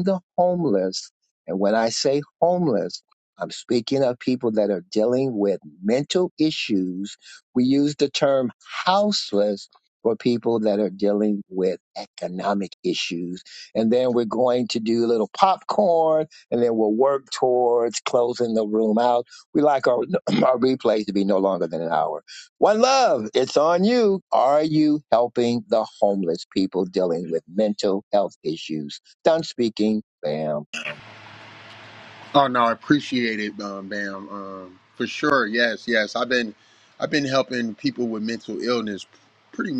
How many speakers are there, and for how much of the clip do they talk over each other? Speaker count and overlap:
2, no overlap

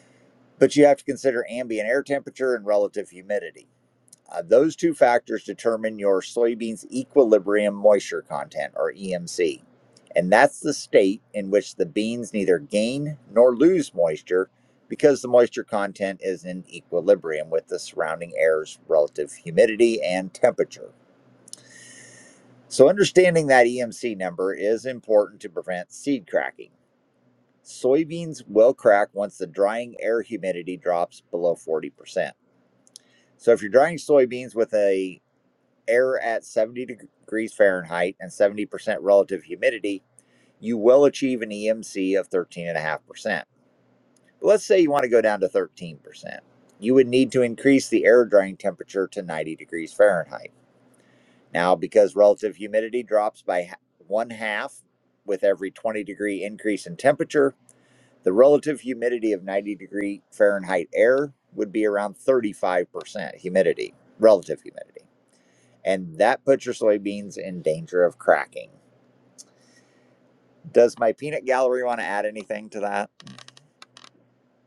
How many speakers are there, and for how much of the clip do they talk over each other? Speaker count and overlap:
1, no overlap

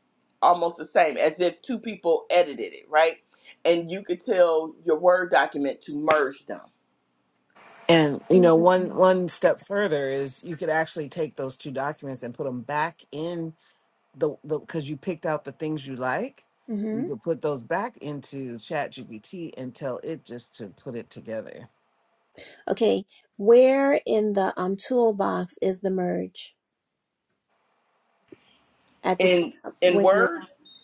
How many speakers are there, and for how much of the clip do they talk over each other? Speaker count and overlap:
3, about 5%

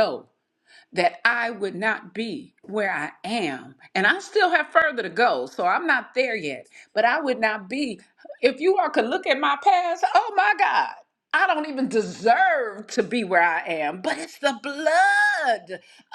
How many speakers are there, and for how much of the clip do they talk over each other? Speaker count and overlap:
1, no overlap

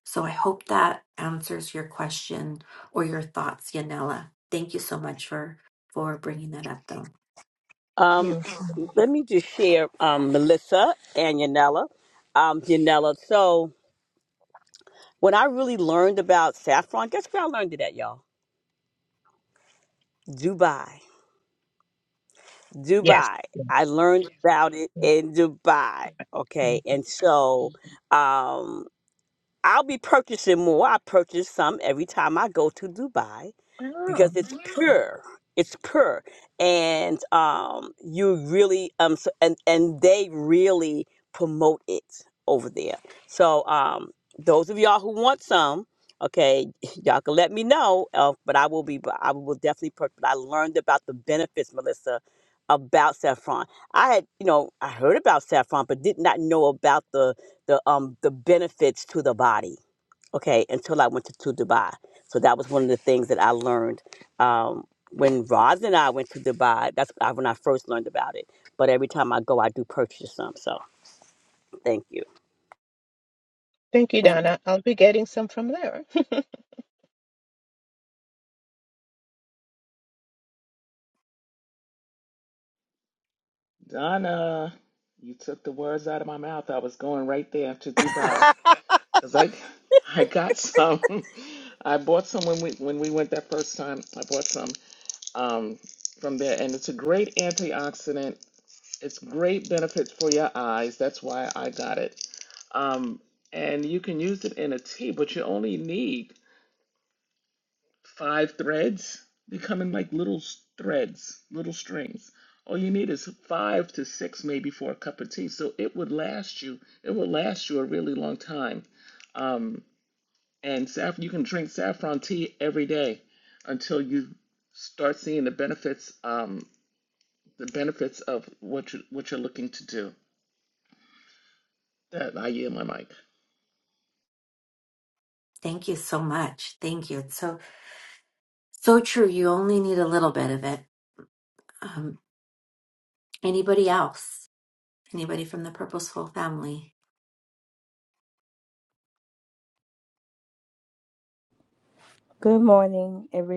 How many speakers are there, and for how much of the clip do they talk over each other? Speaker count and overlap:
5, under 1%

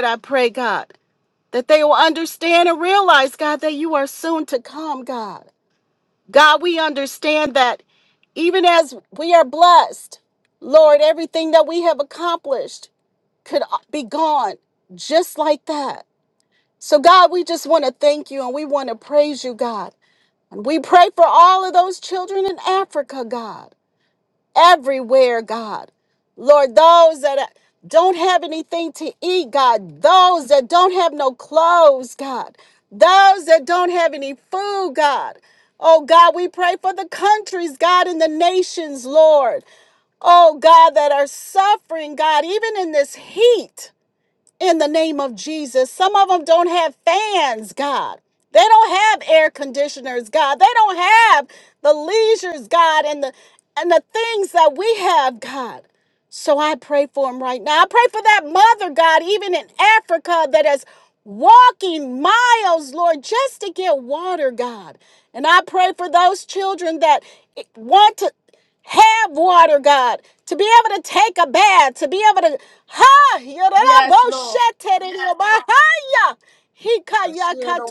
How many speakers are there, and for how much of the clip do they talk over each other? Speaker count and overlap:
2, about 1%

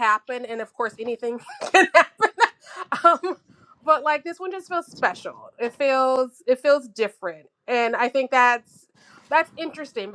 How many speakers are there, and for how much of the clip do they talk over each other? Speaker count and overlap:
1, no overlap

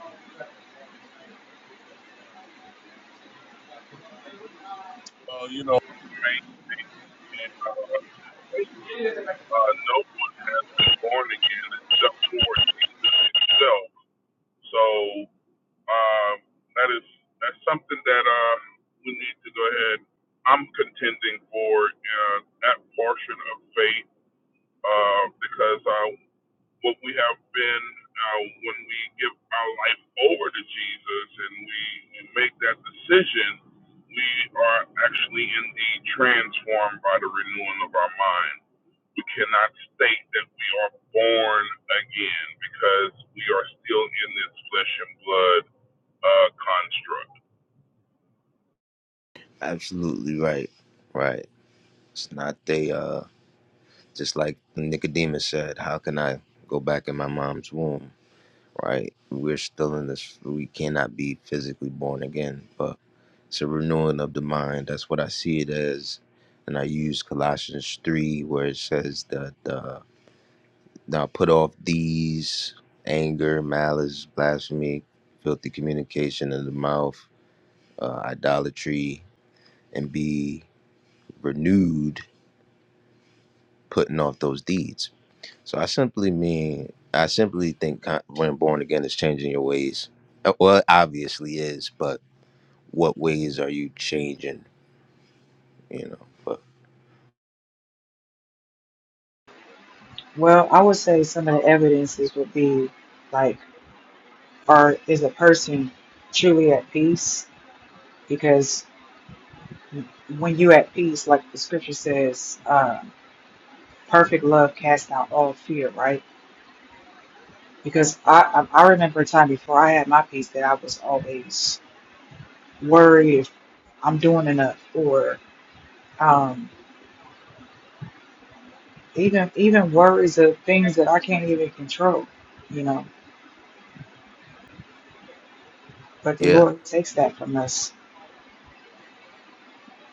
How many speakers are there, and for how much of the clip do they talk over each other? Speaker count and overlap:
3, under 1%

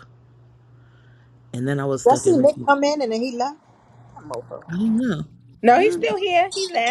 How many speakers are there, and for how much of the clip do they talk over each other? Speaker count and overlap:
3, about 16%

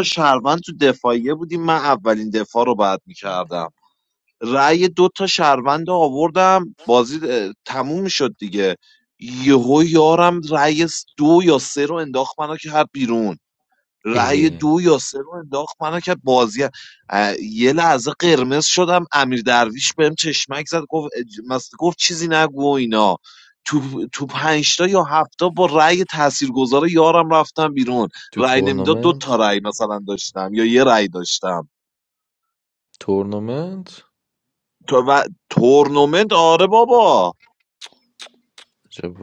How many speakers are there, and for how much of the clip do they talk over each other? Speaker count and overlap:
2, about 4%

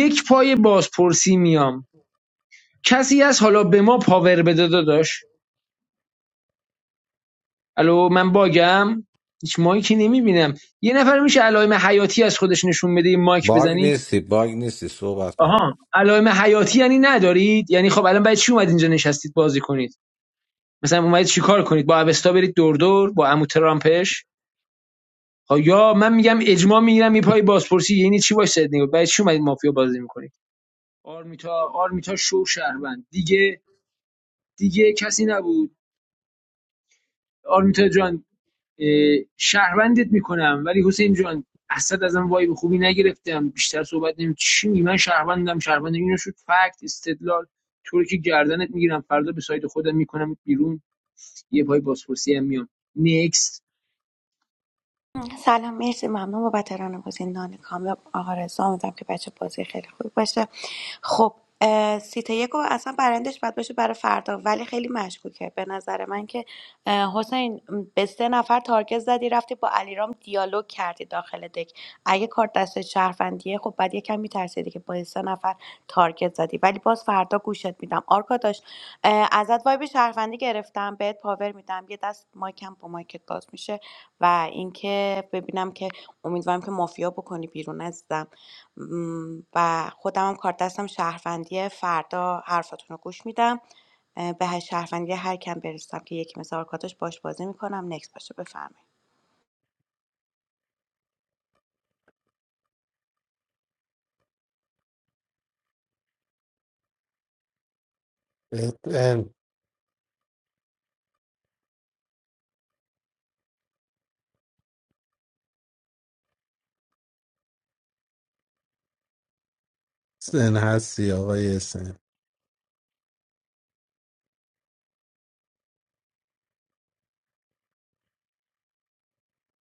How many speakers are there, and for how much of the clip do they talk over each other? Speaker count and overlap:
4, under 1%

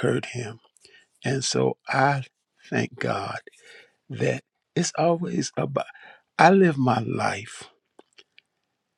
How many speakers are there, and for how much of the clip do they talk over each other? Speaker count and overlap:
1, no overlap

